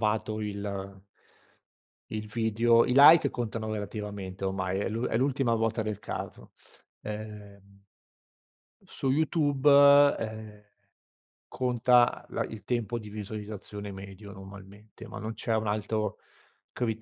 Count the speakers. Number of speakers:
one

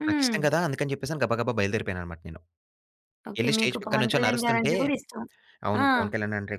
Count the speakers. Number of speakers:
two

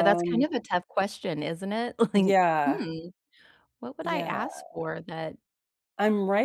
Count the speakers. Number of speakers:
two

